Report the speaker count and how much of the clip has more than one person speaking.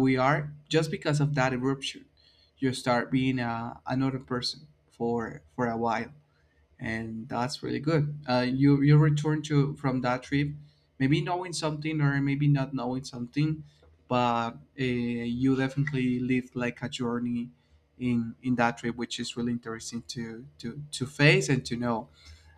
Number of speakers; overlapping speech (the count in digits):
1, no overlap